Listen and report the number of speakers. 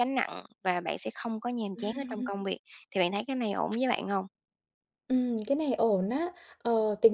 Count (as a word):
two